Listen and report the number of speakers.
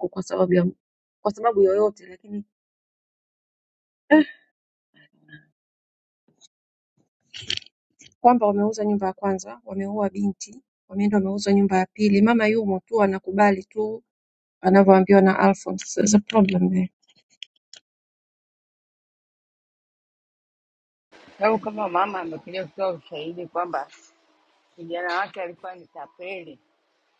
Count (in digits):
2